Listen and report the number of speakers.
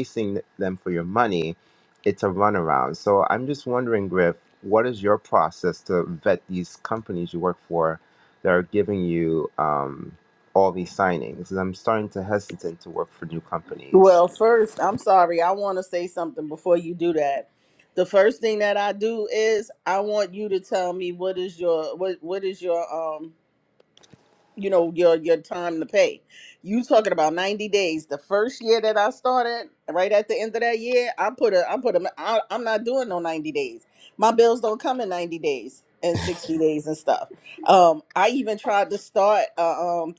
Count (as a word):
two